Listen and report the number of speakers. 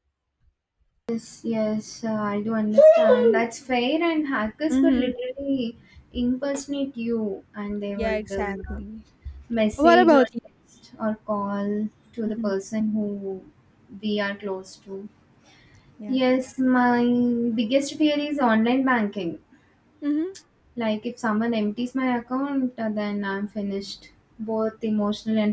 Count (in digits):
2